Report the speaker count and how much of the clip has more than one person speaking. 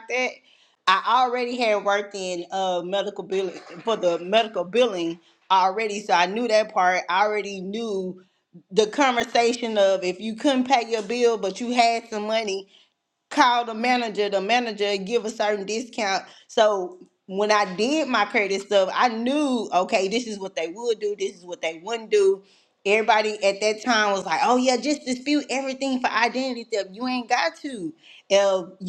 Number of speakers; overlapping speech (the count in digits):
1, no overlap